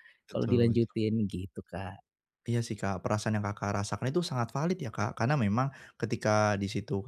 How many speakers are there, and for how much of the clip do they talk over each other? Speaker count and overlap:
2, about 8%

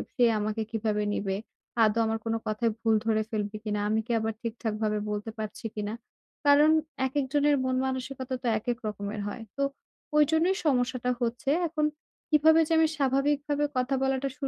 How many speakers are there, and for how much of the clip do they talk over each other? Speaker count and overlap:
1, no overlap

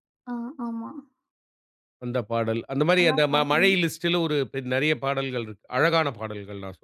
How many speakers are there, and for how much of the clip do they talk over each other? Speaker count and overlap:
2, about 12%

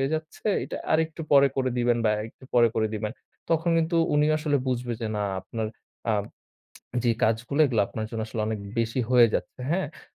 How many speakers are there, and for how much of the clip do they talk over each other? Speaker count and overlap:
1, no overlap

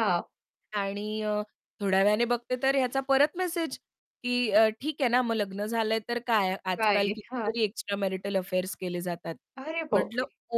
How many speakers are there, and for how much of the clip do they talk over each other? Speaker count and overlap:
2, about 10%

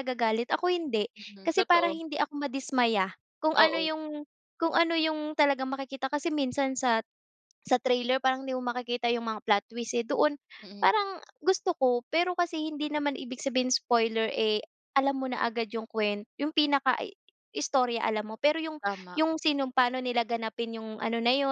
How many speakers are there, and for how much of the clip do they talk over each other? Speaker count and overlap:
2, about 4%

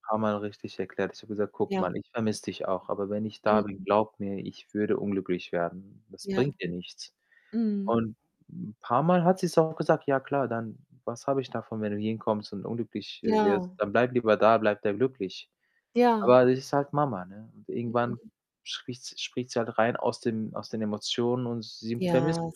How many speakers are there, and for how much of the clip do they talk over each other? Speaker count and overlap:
2, about 8%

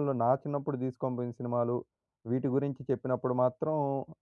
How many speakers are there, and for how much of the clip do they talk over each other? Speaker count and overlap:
1, no overlap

